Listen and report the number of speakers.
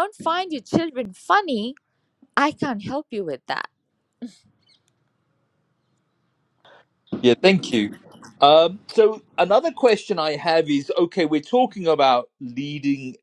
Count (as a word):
two